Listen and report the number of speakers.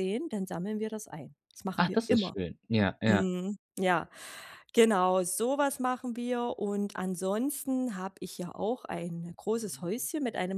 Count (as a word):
two